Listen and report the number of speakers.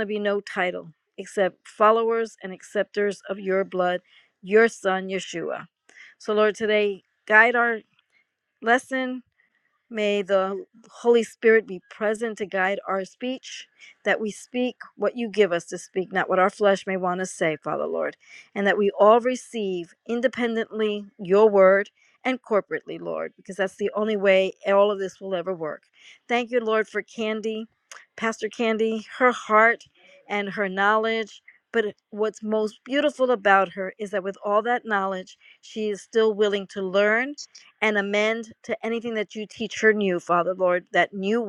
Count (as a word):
one